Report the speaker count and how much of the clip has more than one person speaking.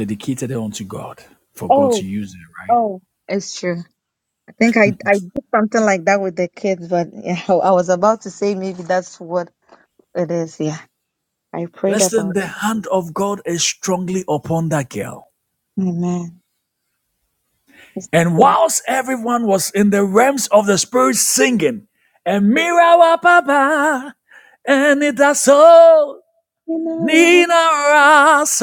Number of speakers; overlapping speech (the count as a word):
two, about 5%